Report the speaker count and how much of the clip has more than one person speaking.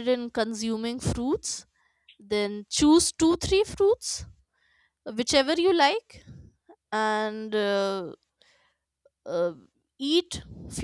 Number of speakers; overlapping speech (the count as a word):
one, no overlap